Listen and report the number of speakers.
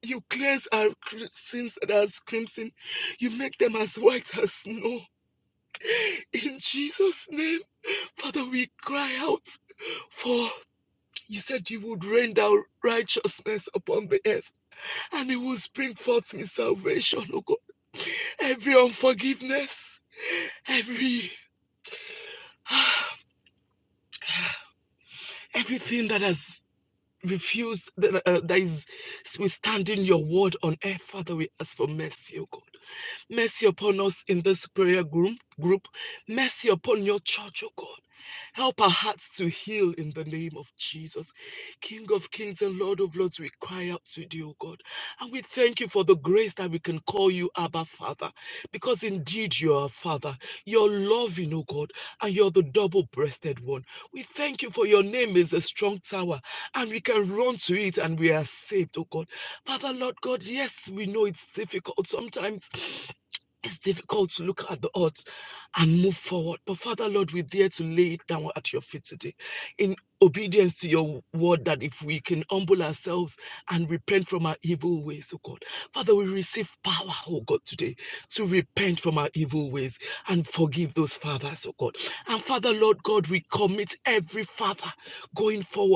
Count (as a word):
one